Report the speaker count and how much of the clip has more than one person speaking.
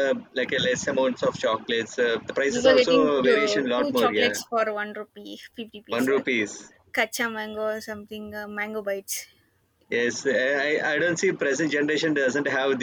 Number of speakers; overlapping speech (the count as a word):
two, about 18%